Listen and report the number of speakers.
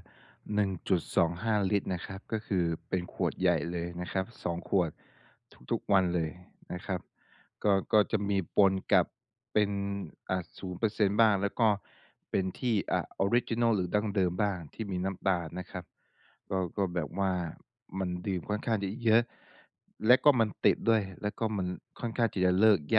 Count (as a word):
one